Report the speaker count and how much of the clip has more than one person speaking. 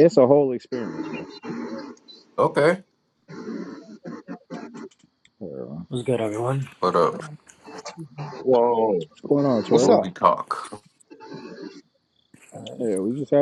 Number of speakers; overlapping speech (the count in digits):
4, about 4%